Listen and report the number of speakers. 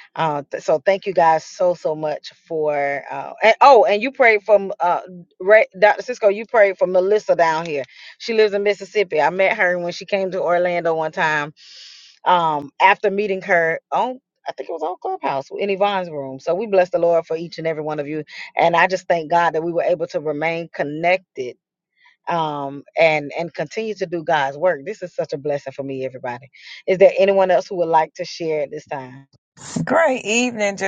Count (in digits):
2